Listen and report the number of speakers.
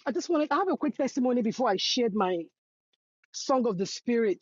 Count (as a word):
one